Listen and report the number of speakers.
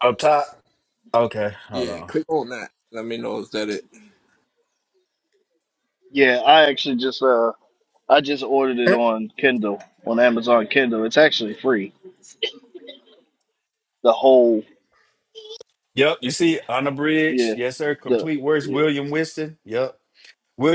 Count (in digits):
3